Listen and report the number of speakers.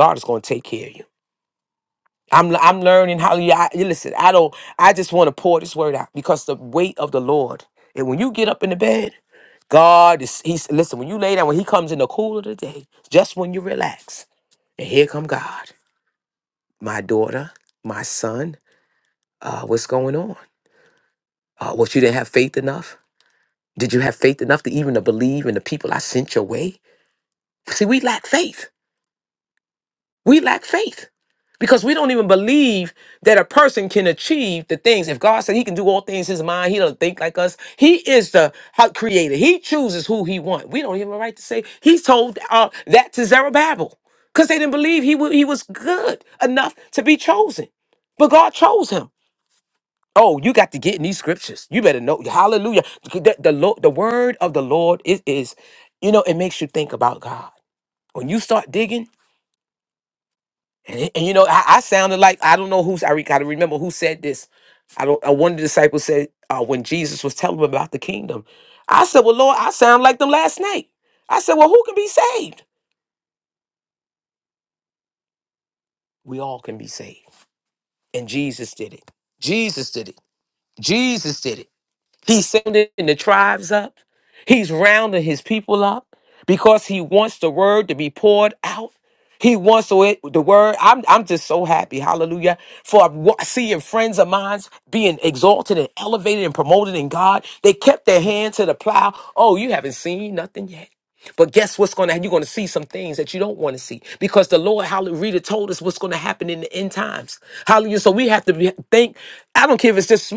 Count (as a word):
one